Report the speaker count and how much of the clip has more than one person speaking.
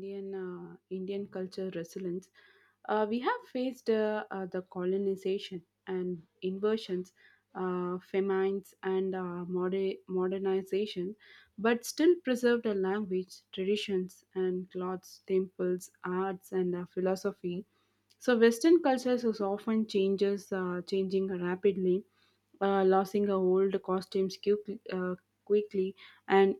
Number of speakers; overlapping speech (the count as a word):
one, no overlap